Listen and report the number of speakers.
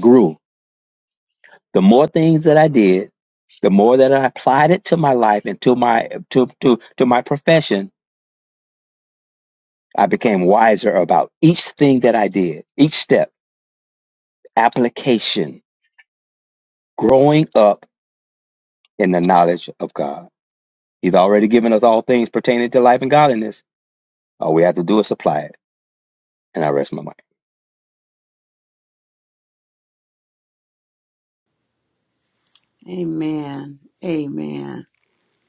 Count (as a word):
two